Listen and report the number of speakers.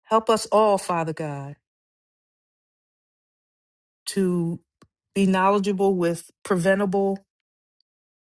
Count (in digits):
1